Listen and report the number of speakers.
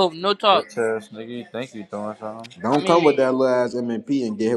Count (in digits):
3